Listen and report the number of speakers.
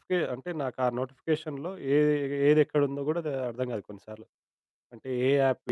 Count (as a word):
one